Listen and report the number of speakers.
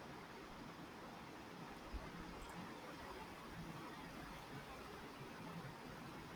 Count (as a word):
zero